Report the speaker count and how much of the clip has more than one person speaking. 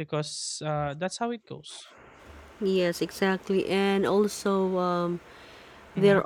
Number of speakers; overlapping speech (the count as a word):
two, about 4%